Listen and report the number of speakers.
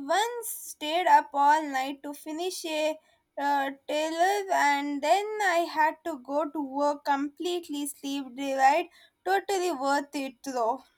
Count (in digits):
1